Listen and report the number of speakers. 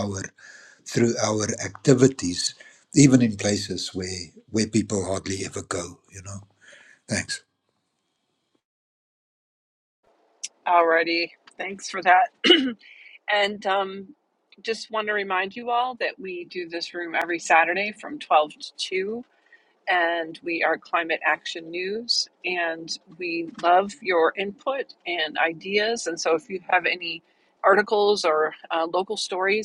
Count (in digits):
2